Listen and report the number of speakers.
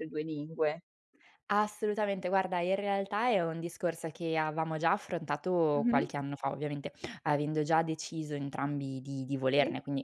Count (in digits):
2